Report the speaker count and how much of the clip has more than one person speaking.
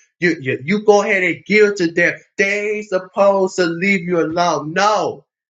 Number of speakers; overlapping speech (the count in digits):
1, no overlap